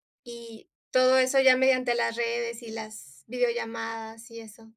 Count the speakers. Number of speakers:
1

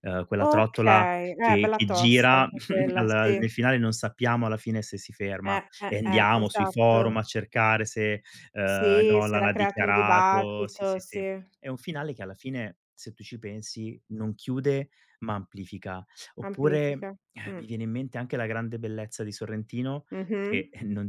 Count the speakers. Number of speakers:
2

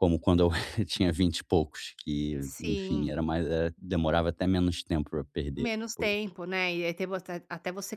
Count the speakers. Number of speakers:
2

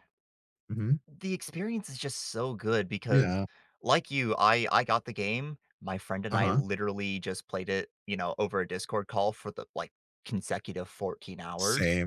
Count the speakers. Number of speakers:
2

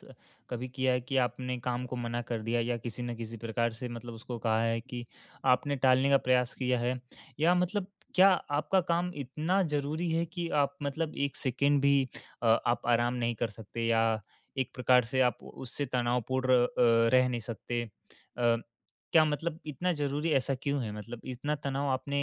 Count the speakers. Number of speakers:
1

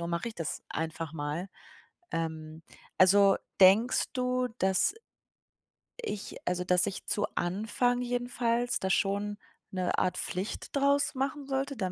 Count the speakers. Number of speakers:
1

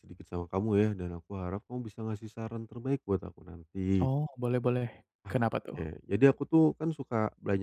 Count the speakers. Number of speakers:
2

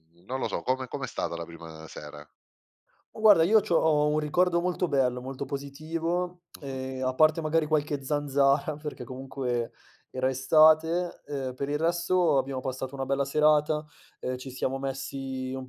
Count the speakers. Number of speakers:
2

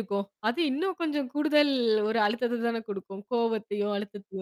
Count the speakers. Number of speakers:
1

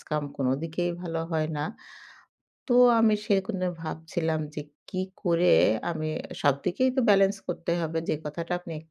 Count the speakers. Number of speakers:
1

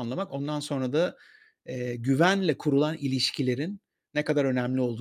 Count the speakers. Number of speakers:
1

